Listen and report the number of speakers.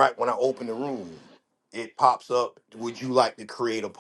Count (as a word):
one